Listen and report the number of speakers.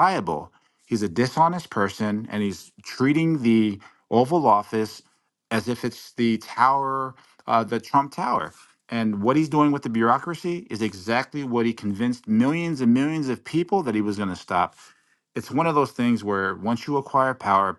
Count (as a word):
one